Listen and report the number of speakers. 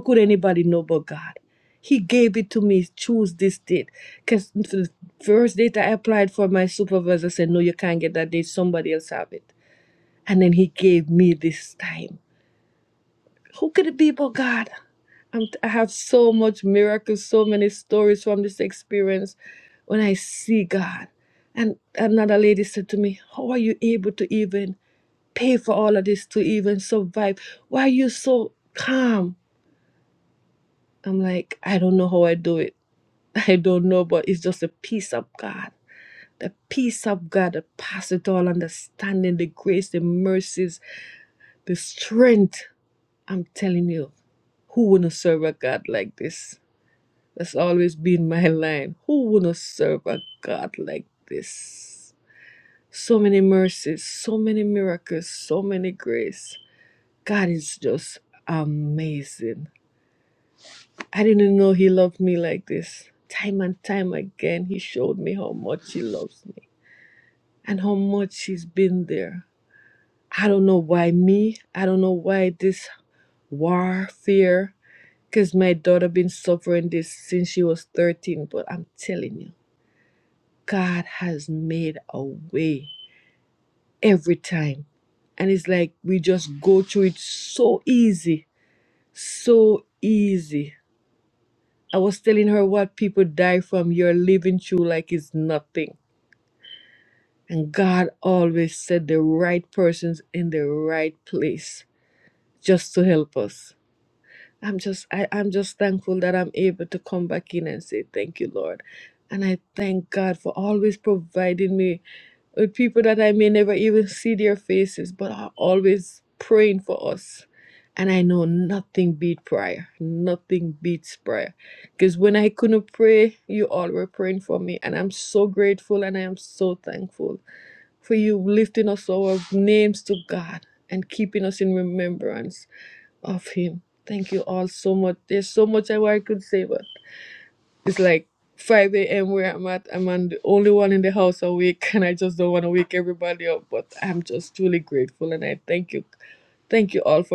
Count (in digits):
1